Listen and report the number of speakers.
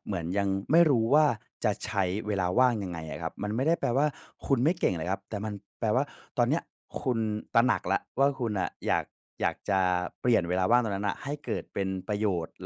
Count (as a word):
one